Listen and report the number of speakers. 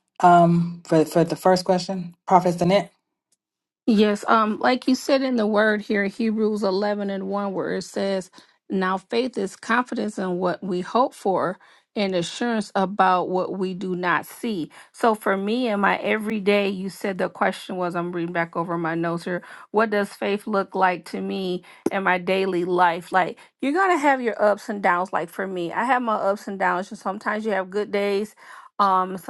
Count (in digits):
2